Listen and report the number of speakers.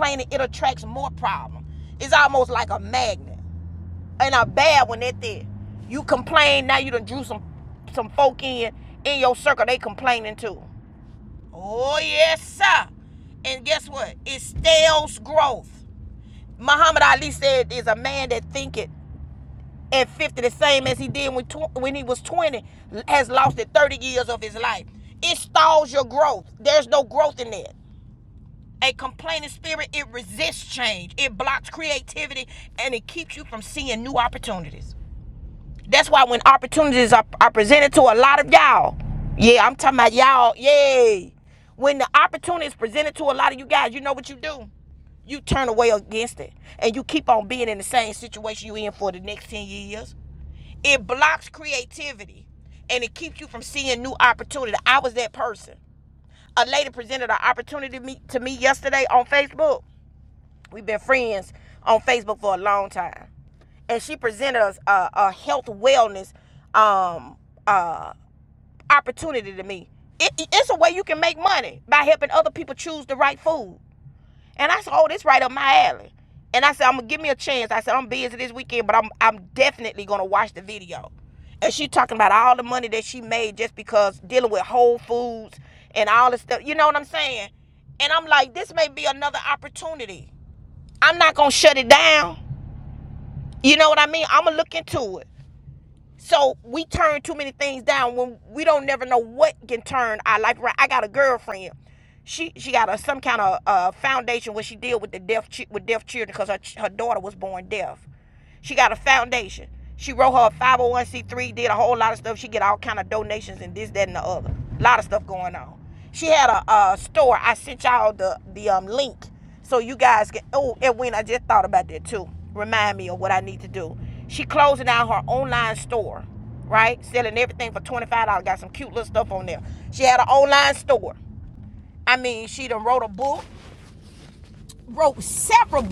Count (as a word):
one